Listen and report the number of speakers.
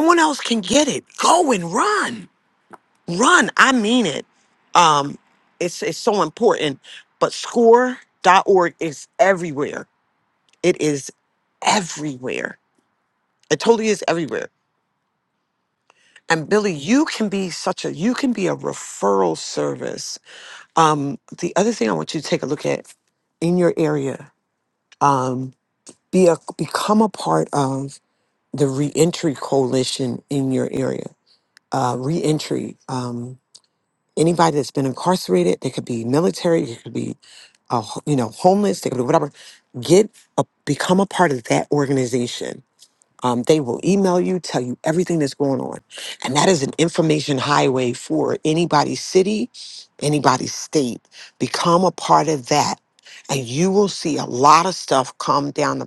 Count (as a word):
one